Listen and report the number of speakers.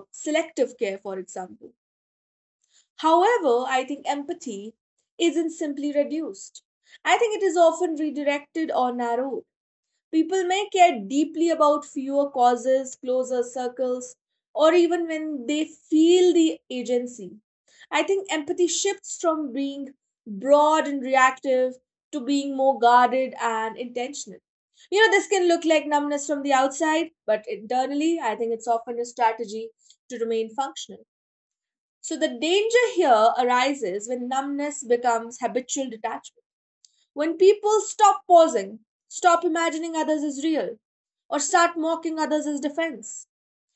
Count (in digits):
1